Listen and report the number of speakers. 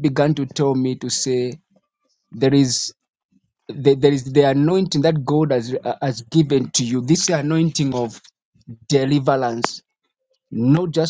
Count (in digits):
1